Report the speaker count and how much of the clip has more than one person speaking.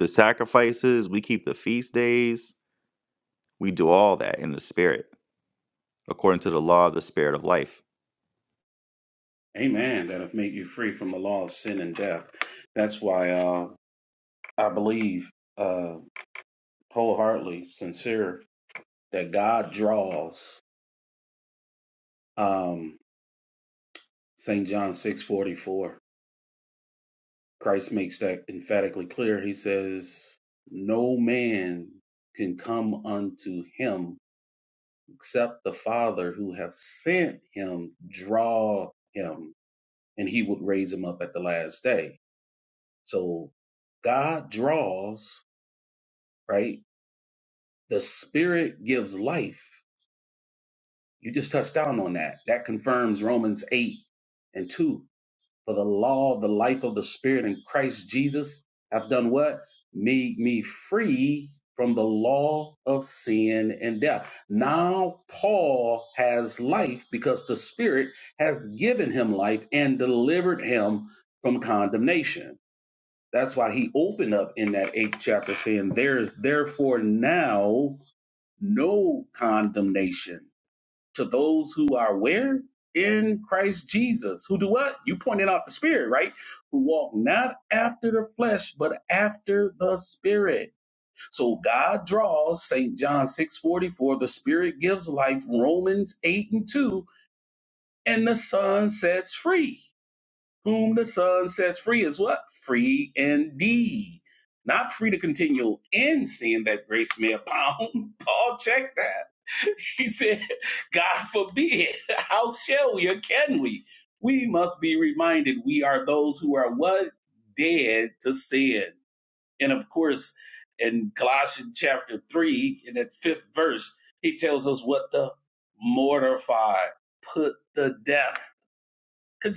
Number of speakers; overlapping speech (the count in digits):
2, no overlap